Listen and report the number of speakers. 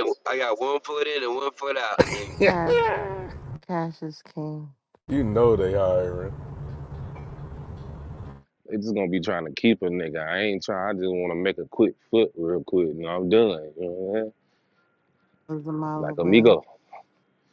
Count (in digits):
4